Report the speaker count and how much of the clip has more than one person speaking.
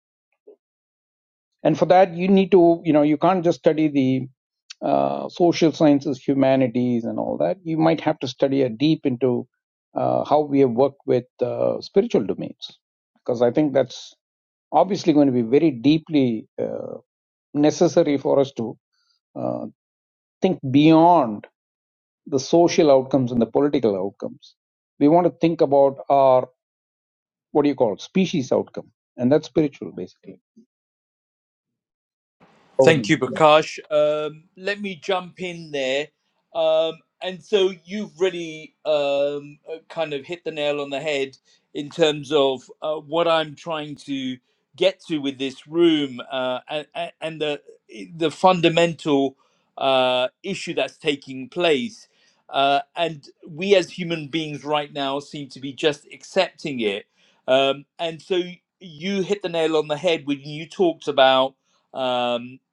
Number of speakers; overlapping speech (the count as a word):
two, about 1%